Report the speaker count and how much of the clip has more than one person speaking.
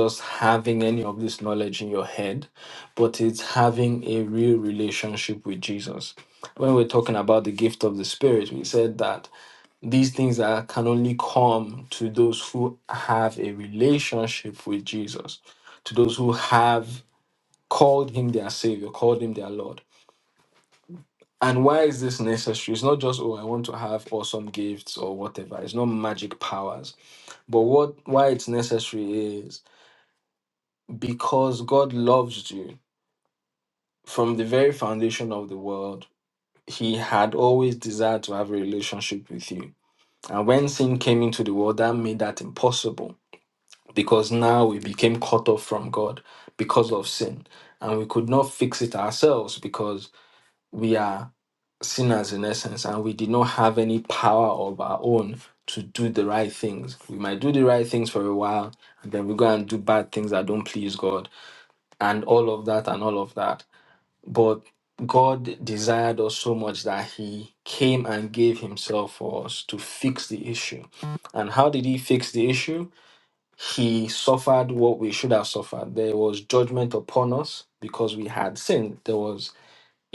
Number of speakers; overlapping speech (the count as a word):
one, no overlap